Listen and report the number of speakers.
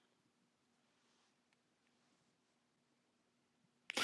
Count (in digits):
0